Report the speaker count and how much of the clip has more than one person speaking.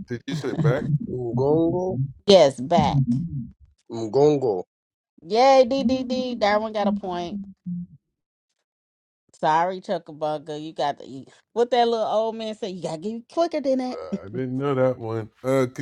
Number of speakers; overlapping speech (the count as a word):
three, about 1%